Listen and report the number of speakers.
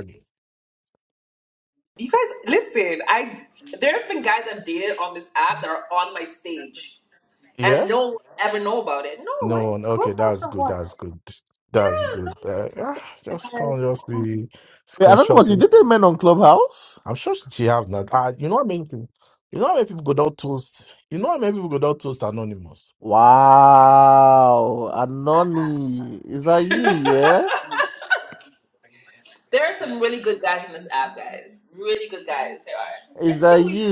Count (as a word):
three